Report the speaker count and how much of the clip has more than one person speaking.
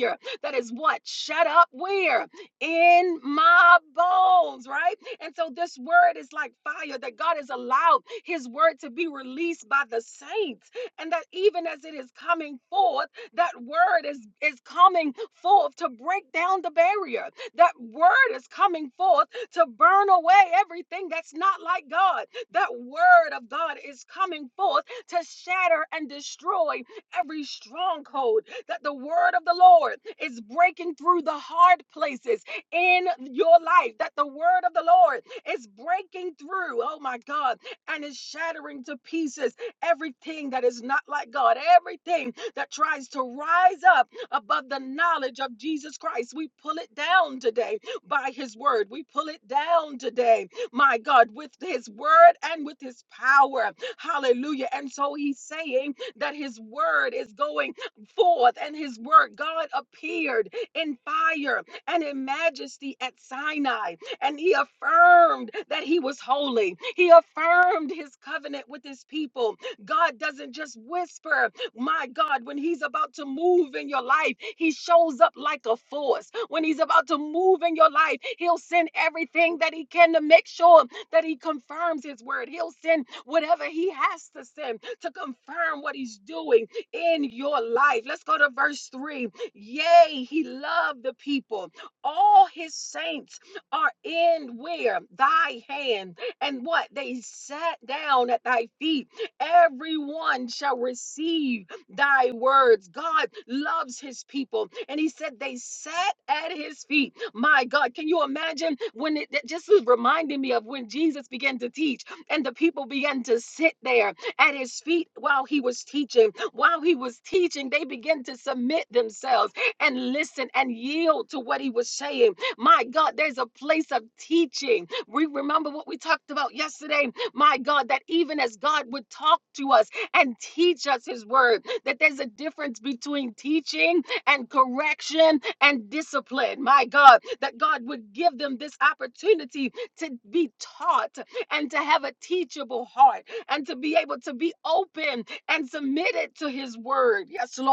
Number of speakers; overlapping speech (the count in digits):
1, no overlap